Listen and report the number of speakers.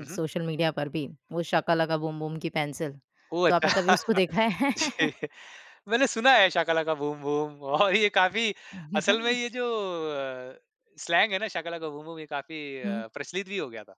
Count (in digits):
2